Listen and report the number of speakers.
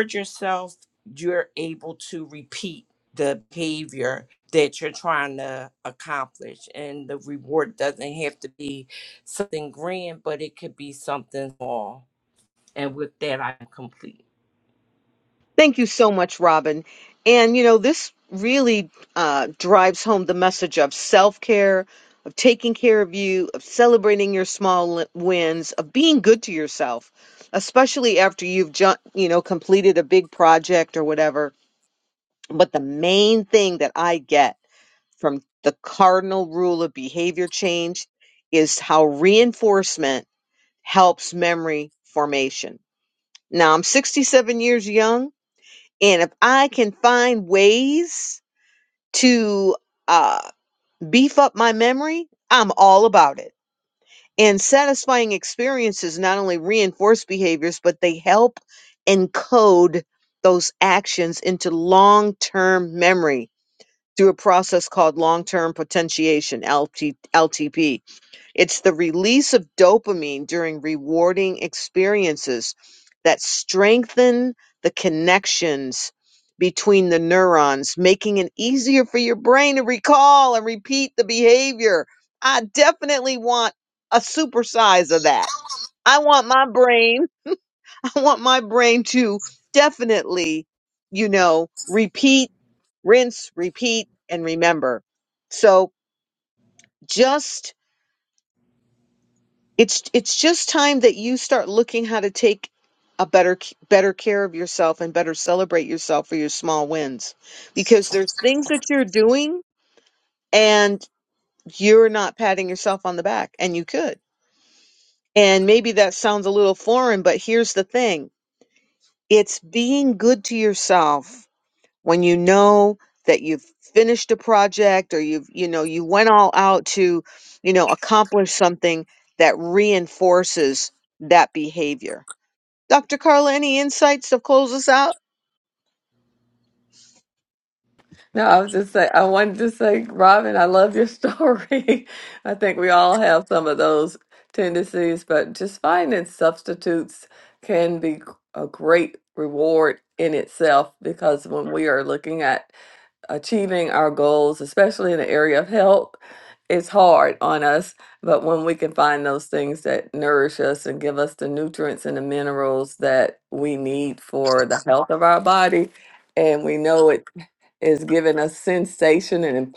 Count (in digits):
3